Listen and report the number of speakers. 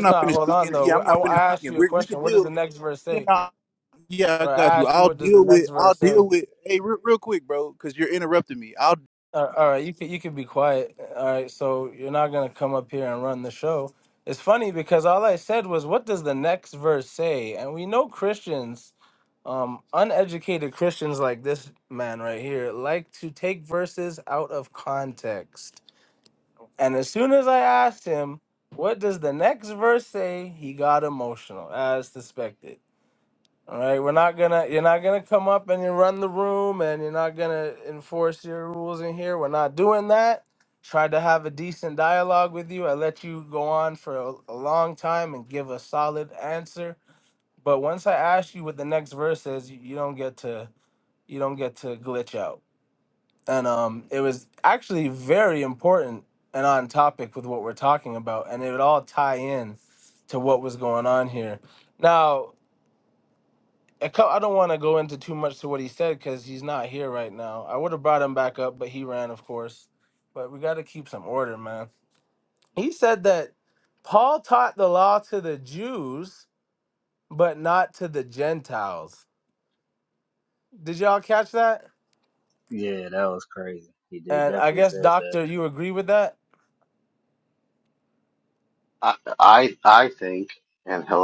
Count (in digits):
4